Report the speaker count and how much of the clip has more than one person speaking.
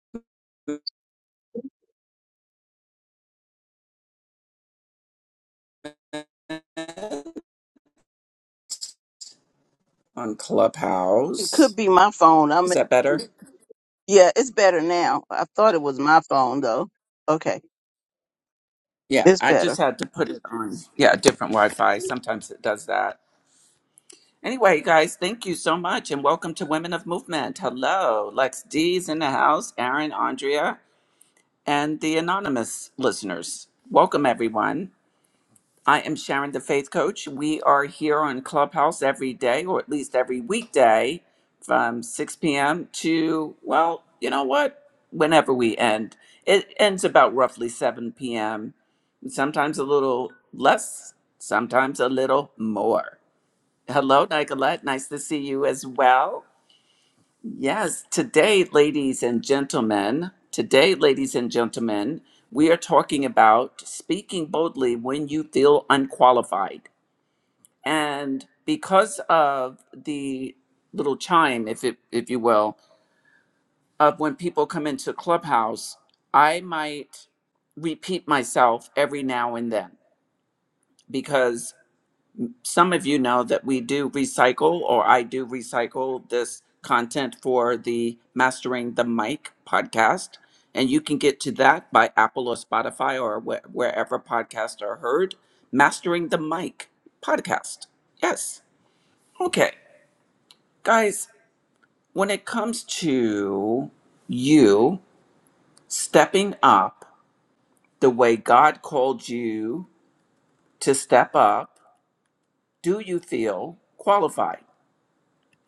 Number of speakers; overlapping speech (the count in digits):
2, about 1%